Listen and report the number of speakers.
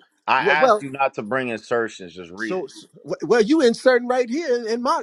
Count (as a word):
two